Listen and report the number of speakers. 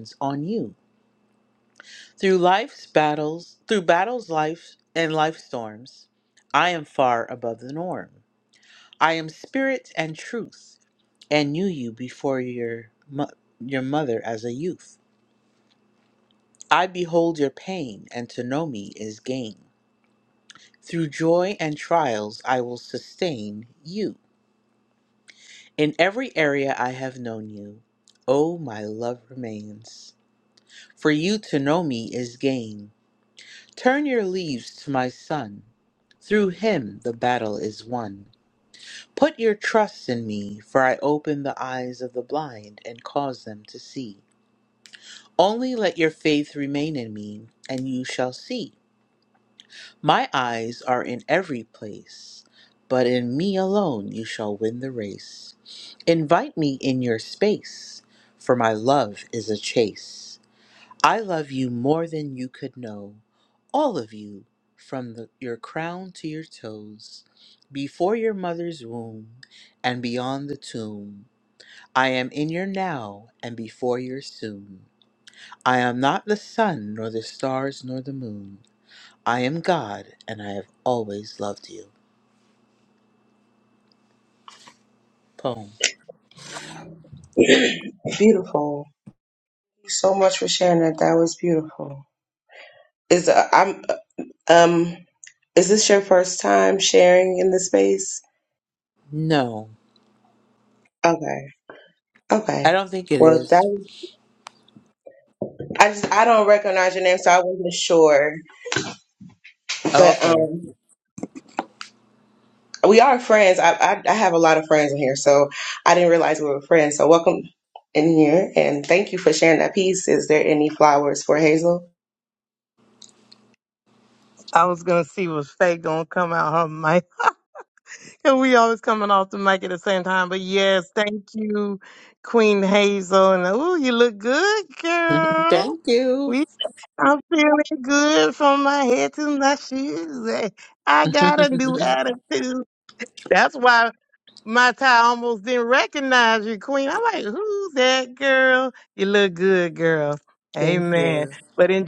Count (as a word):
three